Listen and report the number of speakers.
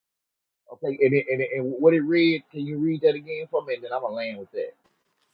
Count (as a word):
one